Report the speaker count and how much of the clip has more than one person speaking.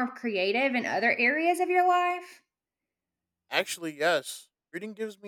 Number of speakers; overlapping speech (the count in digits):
2, no overlap